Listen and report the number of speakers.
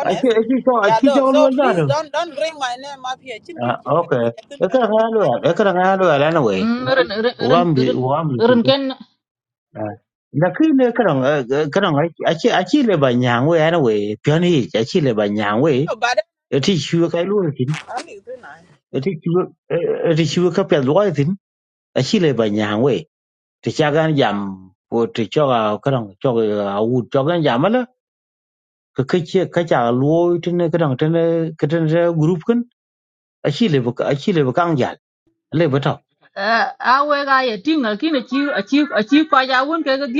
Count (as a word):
three